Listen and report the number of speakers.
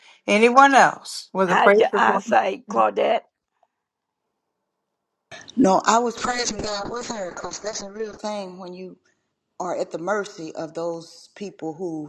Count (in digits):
3